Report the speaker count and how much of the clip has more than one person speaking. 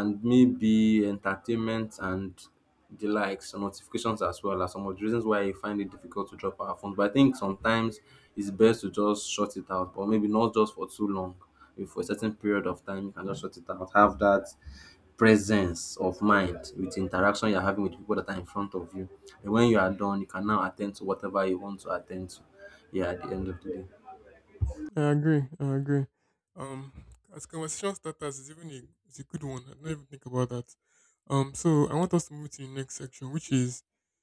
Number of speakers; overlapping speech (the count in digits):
2, no overlap